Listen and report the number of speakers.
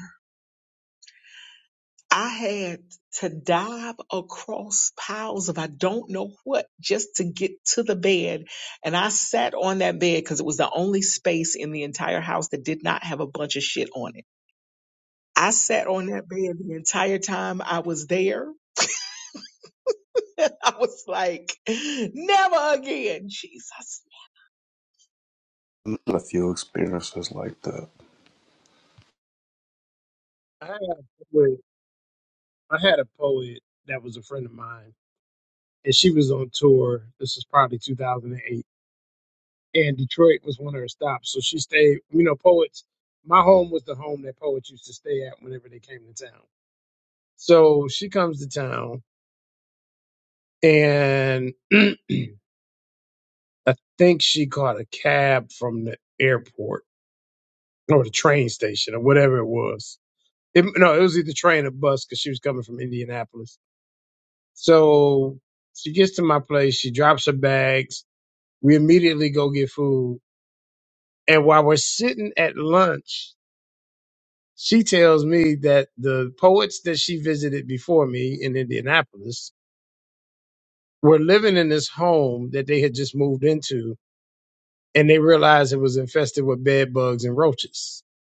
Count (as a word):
three